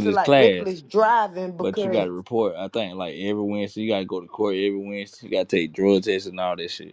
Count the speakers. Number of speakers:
two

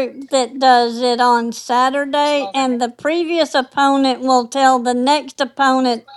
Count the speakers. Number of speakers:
one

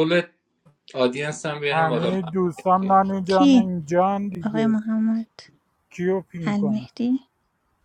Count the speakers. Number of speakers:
three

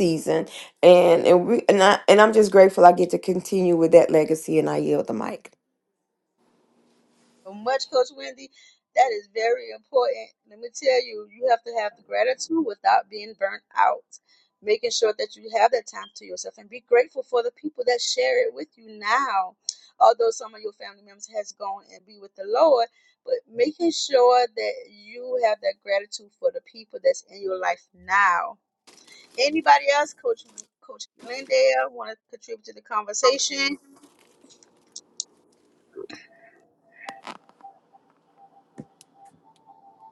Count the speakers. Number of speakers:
two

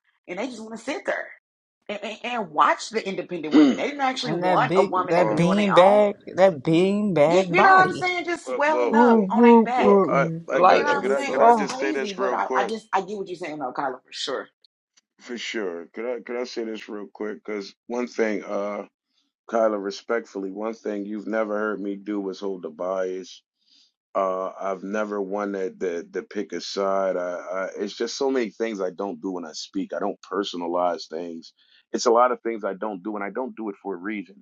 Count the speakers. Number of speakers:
three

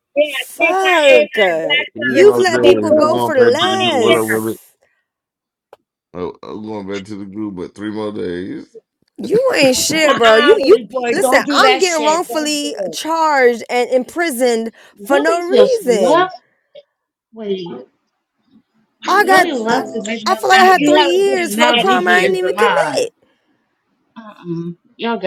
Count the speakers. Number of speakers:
four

